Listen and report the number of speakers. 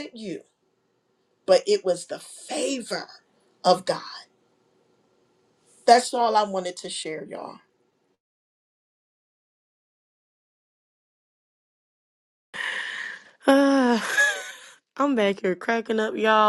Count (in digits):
2